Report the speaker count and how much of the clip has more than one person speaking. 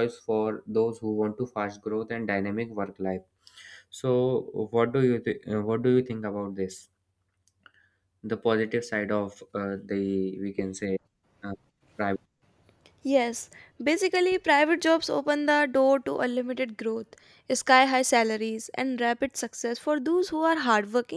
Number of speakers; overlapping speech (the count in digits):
2, no overlap